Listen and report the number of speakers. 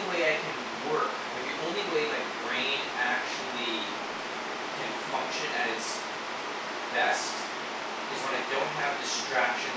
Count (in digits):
1